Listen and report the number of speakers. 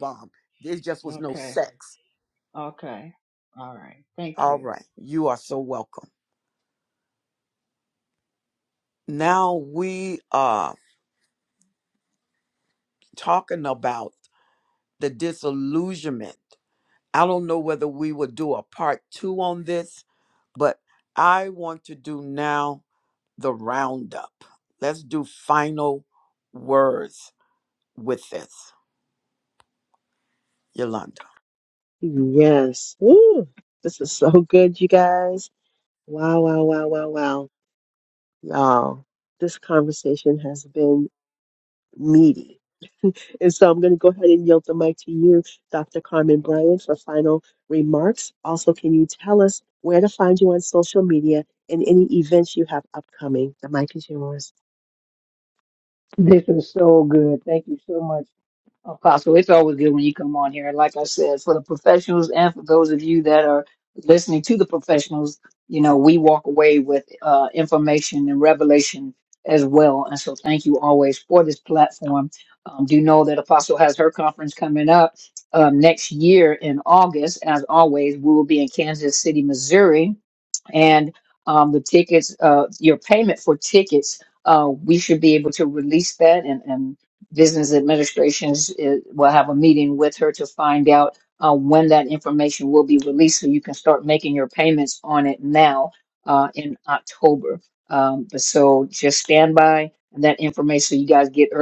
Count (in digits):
4